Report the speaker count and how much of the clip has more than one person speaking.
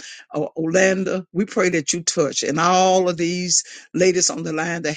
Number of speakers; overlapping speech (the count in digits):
1, no overlap